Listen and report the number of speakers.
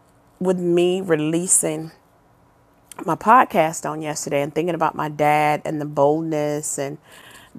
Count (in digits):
1